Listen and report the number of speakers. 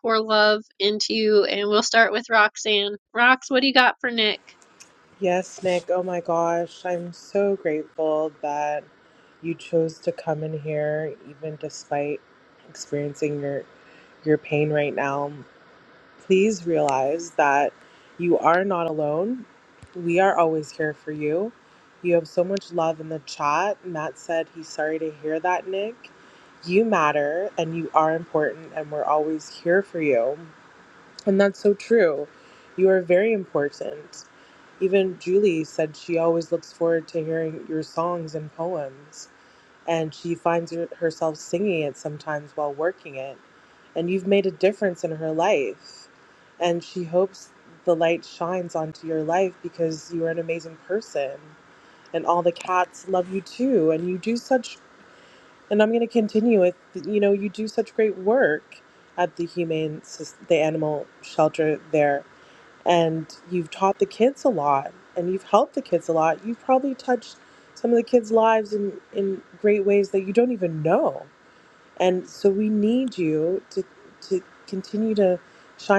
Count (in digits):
2